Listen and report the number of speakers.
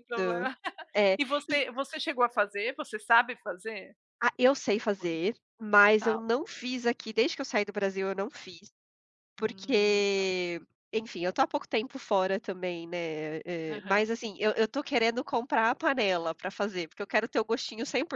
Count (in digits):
2